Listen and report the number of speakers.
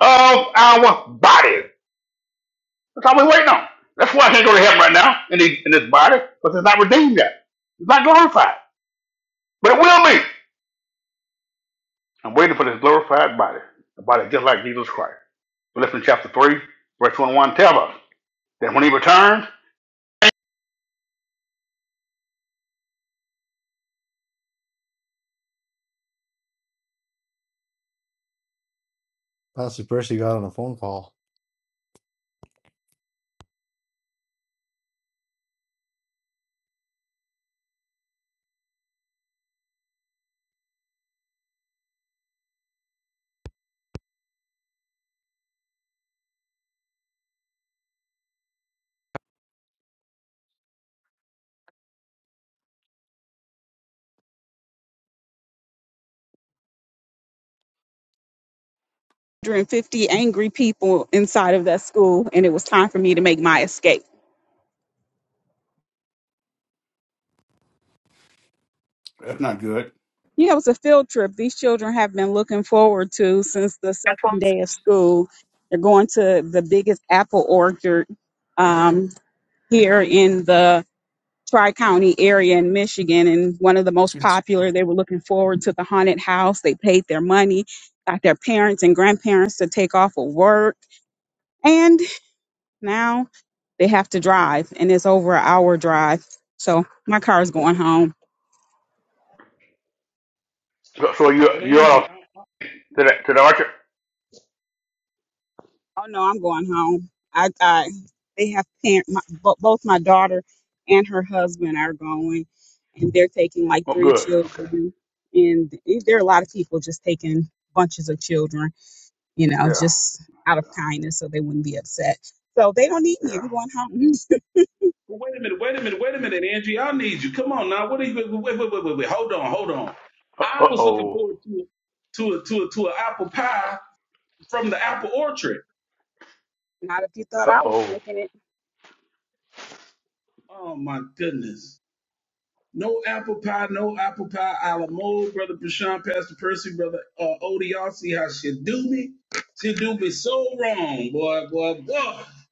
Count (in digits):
4